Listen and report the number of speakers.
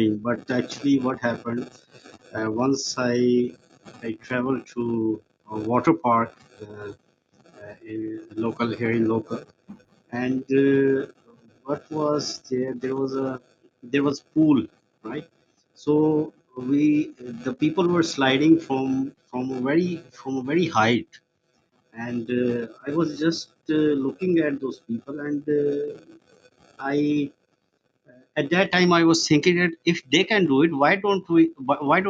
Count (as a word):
one